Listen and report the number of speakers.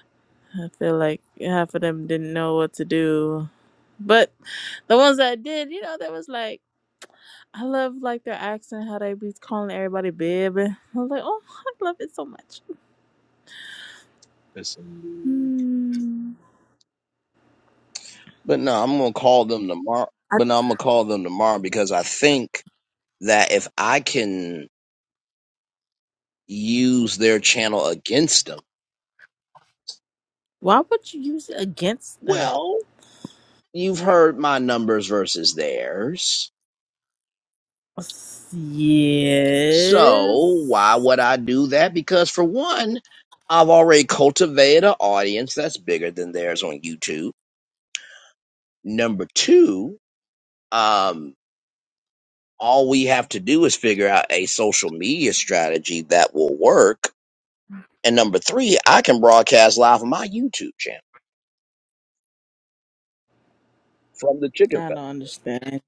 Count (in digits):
2